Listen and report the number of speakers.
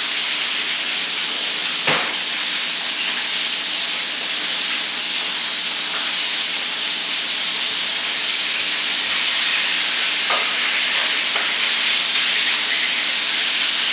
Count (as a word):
zero